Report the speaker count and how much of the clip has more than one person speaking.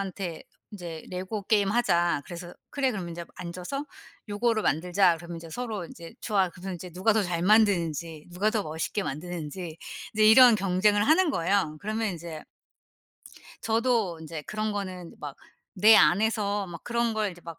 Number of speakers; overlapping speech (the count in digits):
1, no overlap